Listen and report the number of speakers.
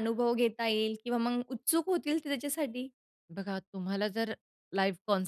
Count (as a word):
two